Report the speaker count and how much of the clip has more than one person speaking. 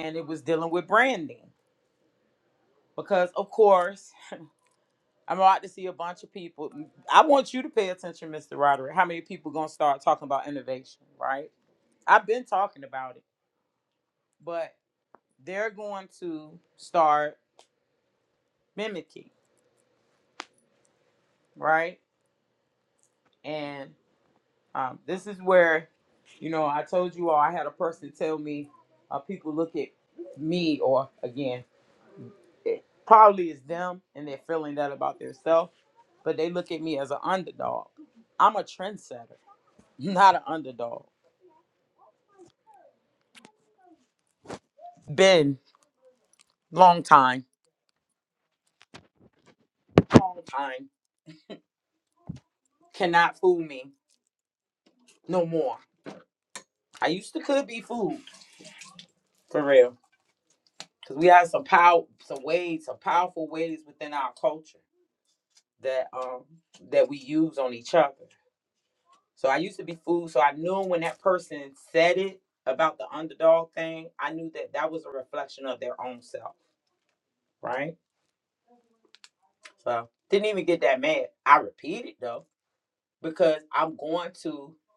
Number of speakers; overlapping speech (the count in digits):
1, no overlap